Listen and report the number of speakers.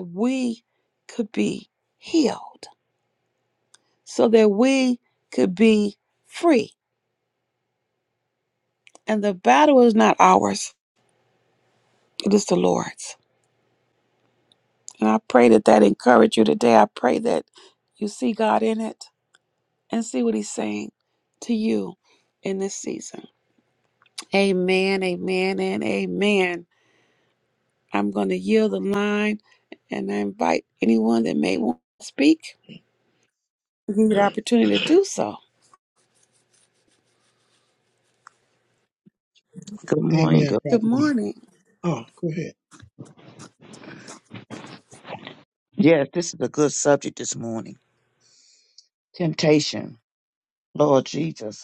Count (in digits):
3